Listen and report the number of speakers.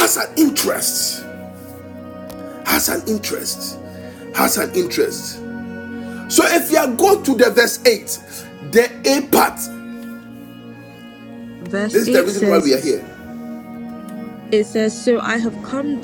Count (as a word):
two